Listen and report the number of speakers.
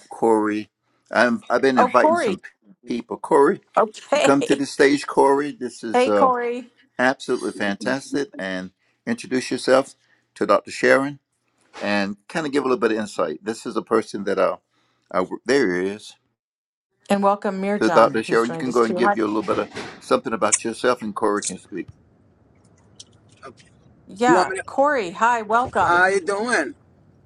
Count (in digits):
3